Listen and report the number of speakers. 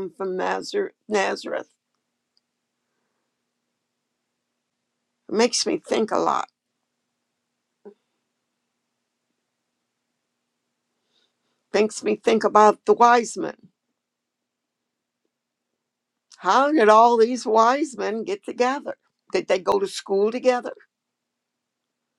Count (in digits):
1